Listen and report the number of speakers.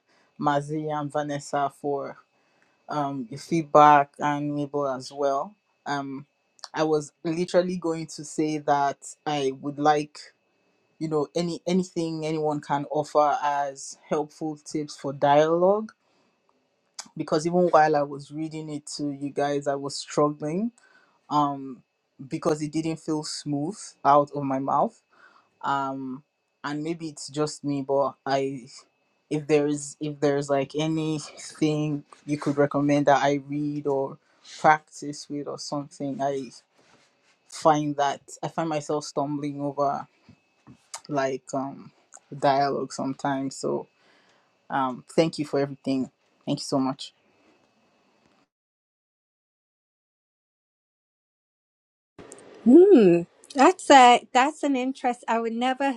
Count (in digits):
2